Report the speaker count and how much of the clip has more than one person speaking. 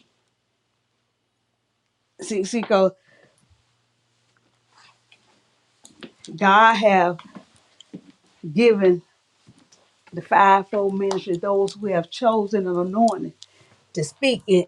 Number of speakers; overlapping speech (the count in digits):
1, no overlap